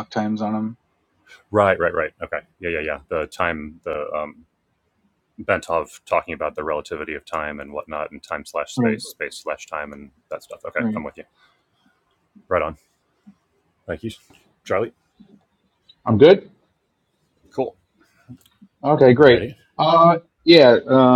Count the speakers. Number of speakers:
3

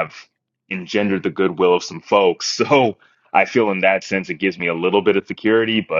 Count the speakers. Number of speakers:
1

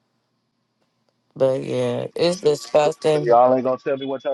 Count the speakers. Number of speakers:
2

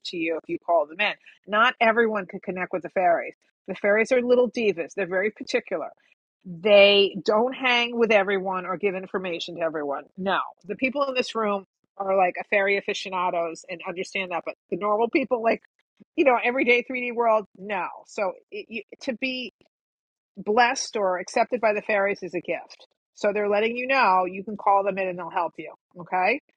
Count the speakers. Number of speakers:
1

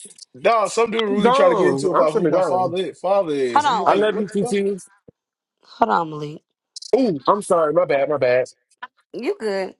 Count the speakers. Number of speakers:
3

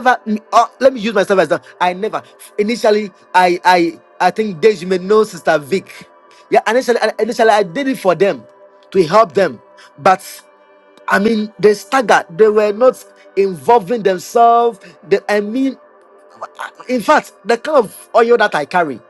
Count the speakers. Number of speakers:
1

